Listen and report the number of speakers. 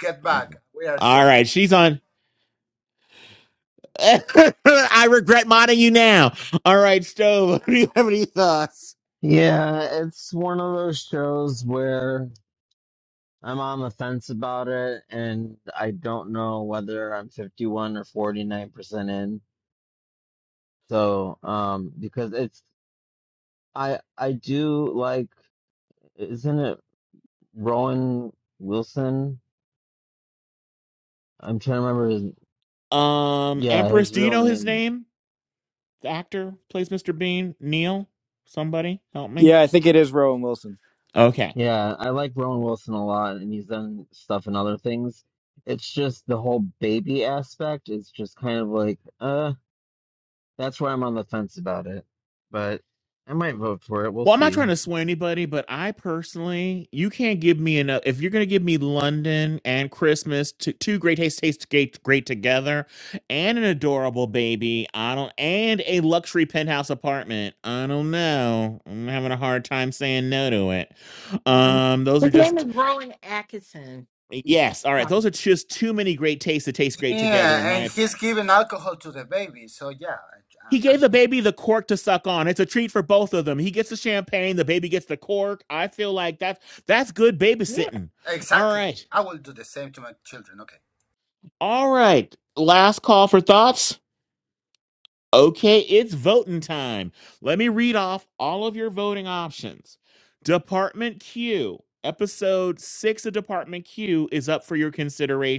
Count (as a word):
five